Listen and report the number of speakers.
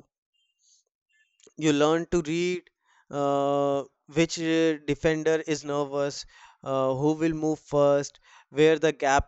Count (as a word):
one